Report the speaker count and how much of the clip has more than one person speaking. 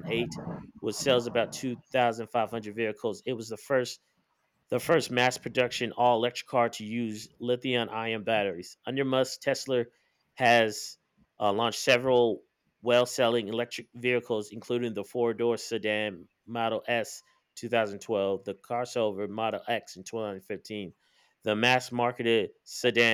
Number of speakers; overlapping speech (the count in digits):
1, no overlap